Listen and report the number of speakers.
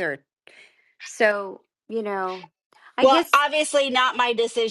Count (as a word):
two